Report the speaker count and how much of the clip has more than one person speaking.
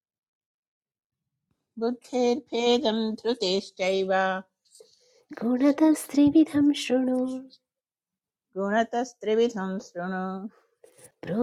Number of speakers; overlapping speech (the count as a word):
two, no overlap